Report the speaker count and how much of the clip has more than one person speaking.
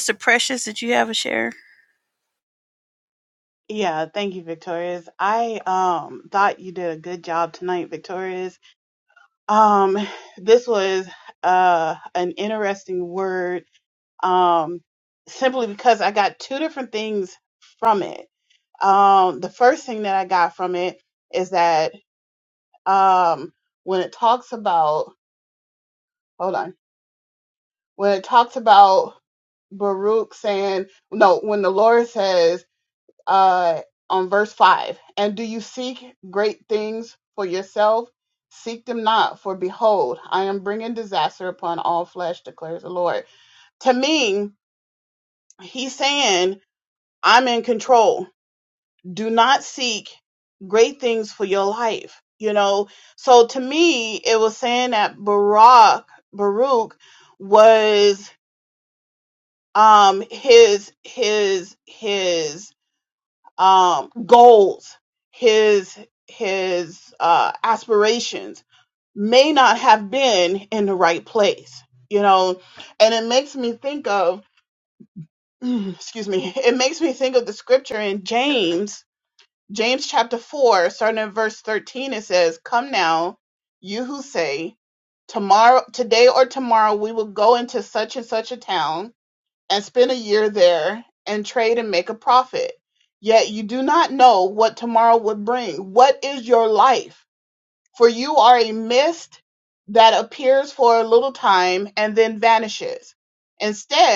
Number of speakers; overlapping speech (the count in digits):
2, no overlap